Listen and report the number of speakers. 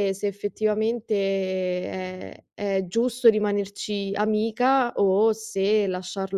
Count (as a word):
one